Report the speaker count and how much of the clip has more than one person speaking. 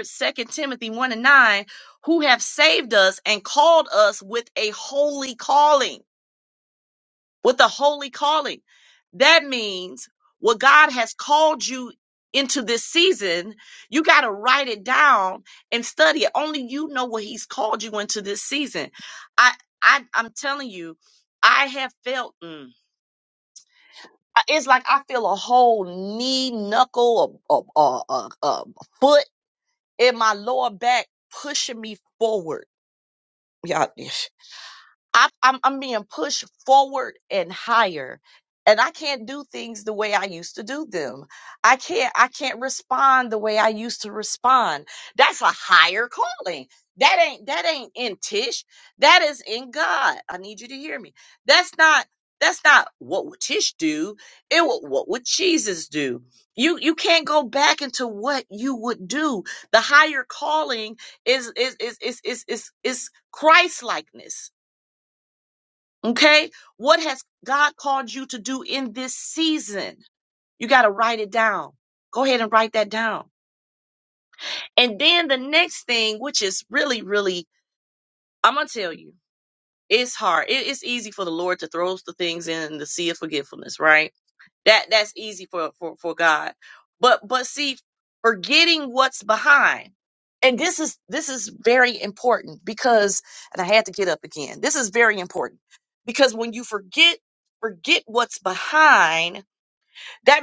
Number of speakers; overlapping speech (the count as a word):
one, no overlap